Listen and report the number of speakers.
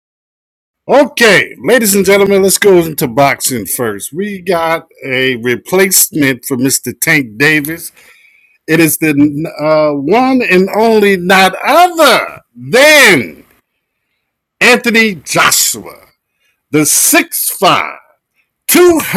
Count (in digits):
1